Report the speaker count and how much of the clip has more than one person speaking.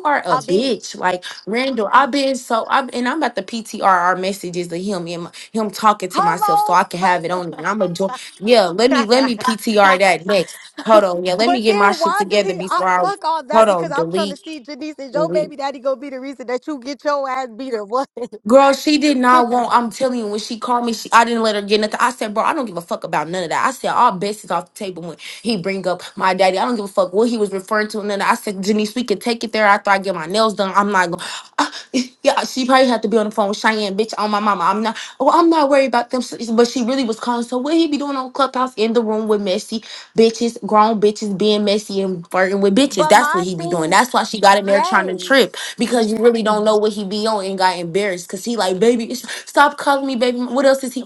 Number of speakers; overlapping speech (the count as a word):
two, about 12%